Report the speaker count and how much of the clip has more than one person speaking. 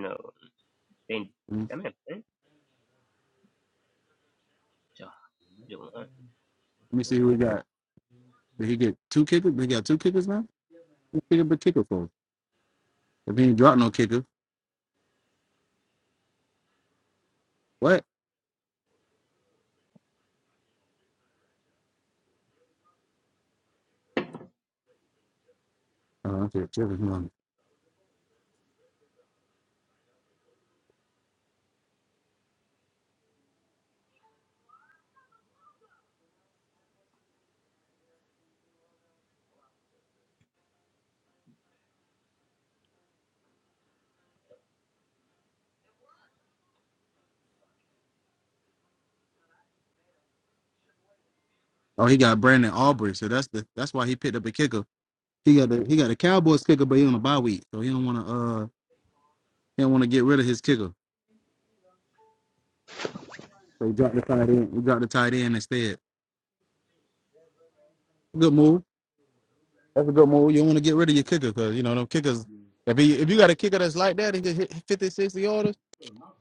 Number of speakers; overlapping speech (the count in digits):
2, under 1%